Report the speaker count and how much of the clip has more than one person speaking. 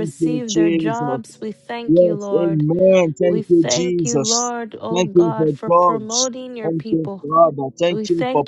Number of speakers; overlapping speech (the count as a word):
two, about 66%